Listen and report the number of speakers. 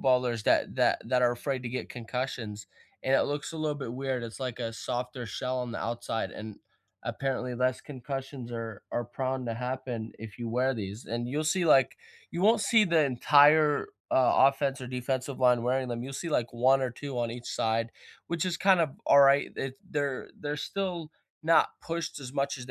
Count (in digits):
1